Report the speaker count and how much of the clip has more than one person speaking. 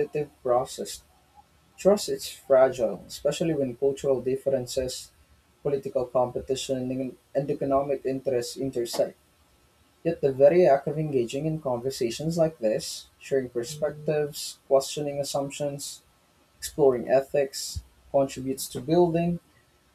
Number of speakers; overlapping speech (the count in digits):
1, no overlap